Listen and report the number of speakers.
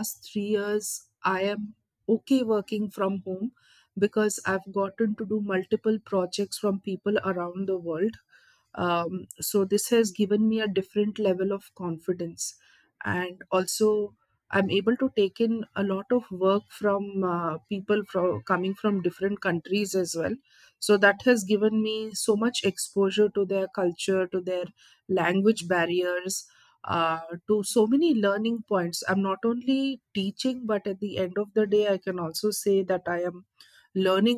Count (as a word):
one